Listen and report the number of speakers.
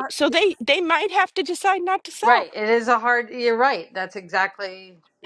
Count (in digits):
2